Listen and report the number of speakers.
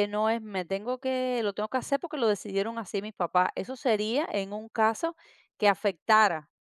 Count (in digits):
1